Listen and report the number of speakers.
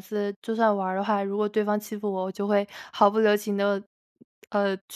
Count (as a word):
one